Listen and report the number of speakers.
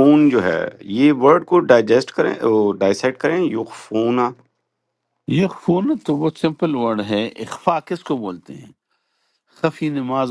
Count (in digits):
2